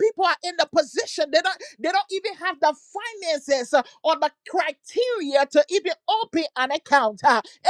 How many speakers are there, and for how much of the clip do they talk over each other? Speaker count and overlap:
1, no overlap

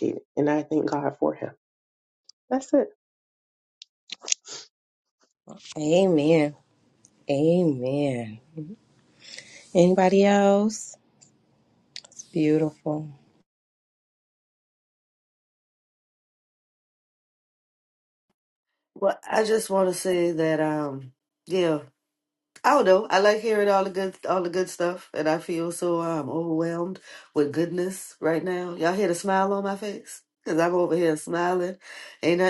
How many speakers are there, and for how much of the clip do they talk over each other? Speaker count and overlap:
3, no overlap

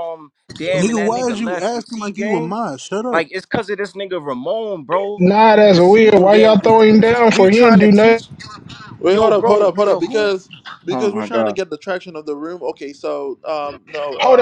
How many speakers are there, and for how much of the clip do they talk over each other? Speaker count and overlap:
4, about 42%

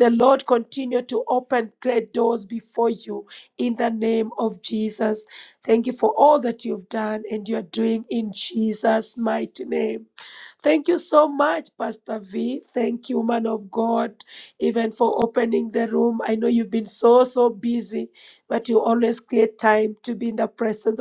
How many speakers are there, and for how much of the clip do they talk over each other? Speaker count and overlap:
1, no overlap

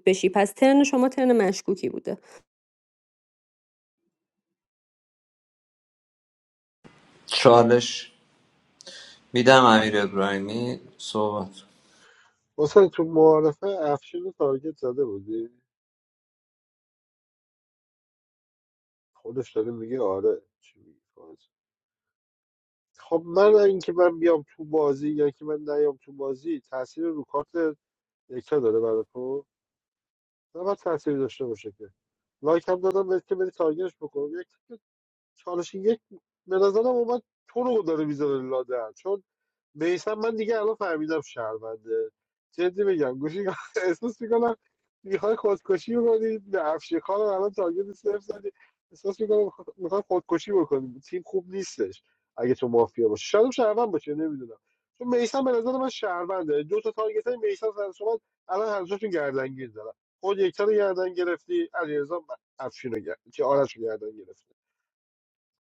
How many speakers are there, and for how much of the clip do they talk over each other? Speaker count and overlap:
3, no overlap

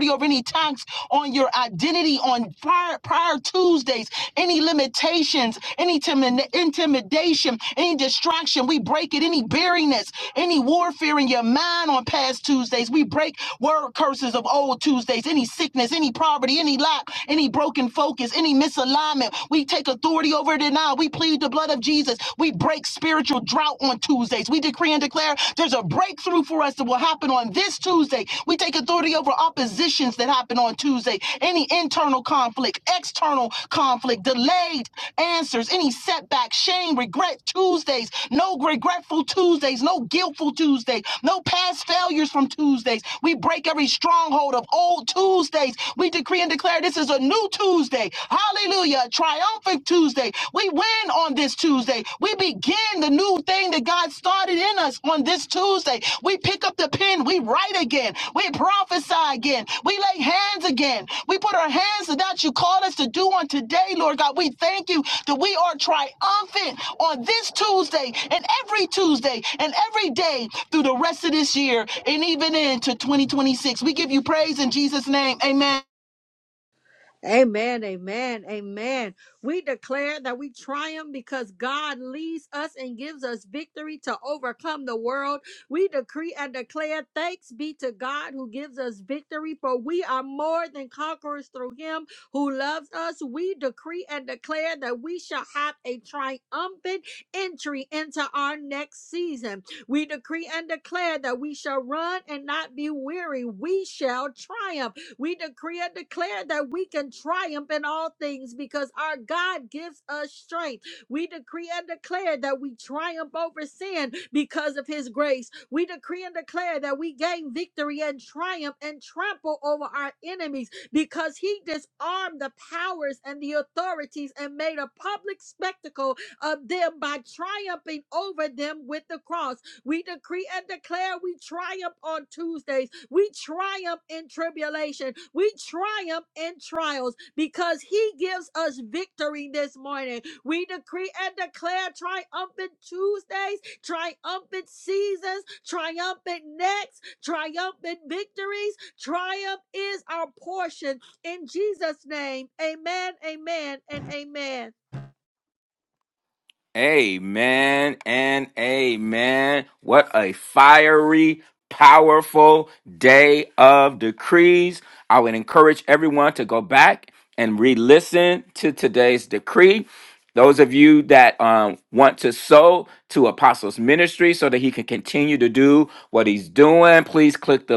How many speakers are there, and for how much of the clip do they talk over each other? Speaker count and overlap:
3, no overlap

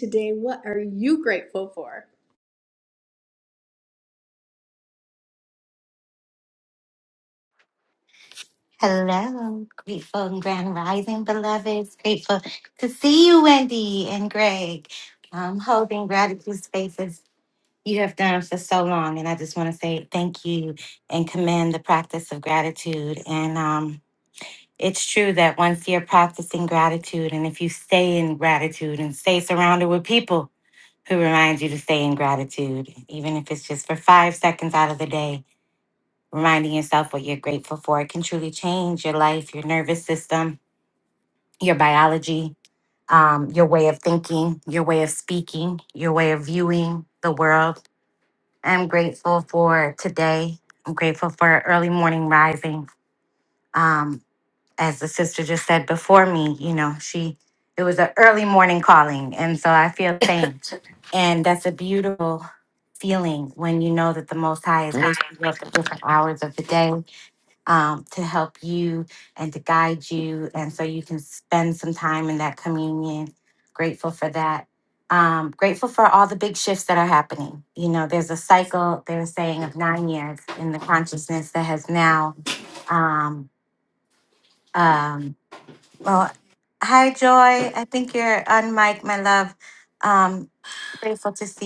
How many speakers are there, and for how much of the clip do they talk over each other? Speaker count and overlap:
2, no overlap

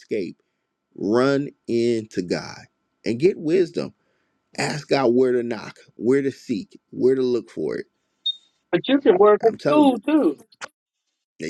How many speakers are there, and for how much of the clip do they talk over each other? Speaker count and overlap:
2, about 5%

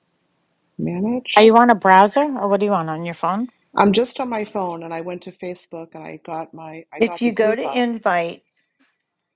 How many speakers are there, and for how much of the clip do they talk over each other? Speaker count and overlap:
3, about 10%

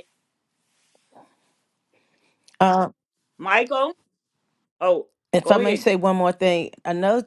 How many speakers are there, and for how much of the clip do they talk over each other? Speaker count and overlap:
2, about 5%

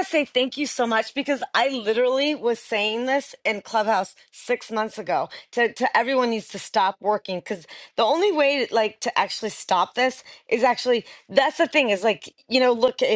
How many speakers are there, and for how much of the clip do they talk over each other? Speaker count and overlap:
1, no overlap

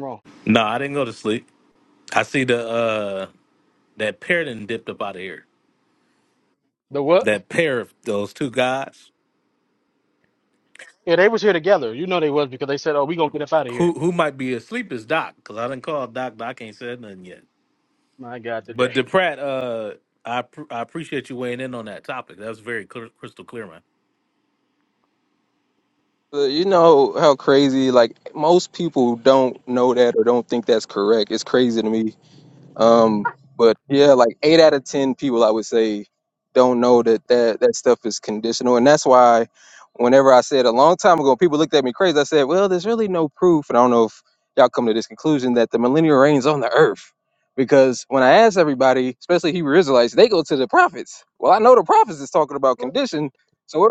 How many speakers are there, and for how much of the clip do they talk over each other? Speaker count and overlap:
3, about 1%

